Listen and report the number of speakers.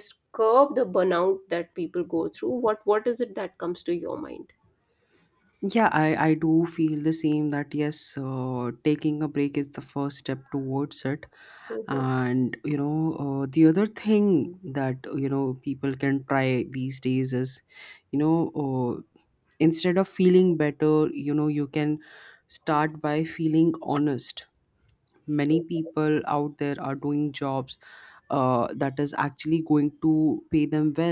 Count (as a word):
two